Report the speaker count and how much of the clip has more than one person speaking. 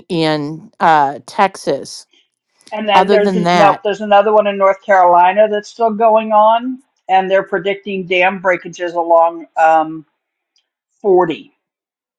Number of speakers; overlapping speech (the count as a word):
two, about 7%